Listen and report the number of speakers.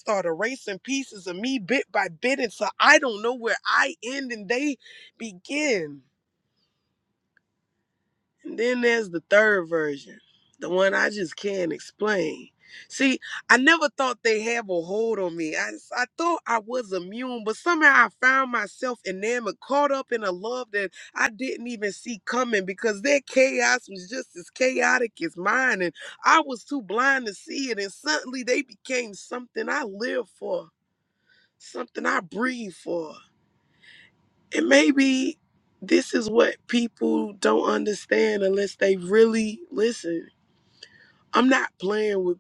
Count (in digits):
1